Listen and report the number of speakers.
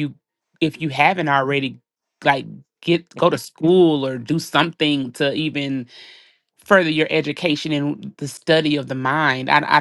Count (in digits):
1